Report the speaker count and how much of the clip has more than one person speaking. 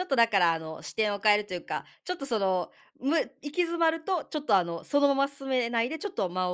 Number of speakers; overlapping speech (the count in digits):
1, no overlap